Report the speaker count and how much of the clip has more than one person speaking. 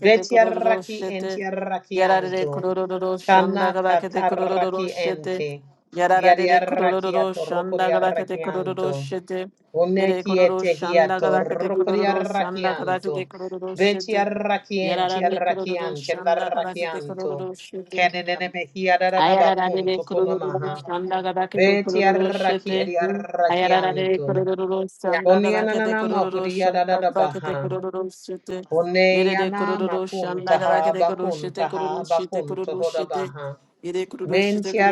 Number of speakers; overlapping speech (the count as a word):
two, about 68%